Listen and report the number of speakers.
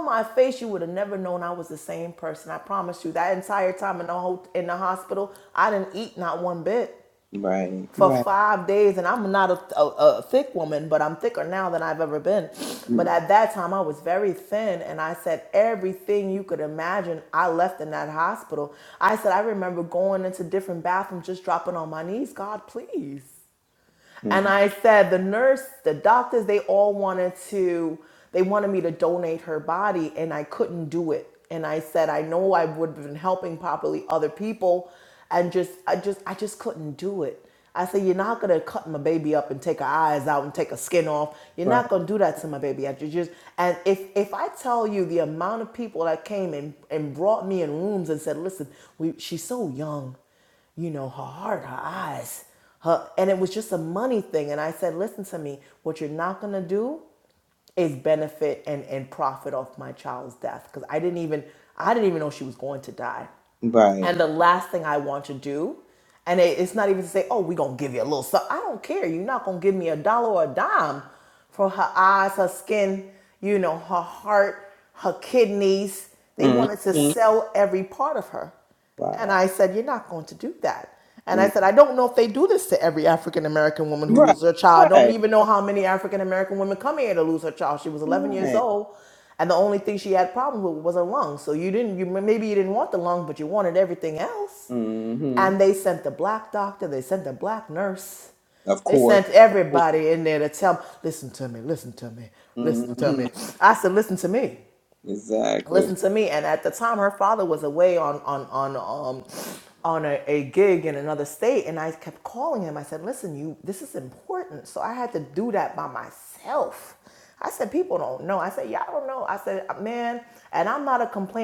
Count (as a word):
two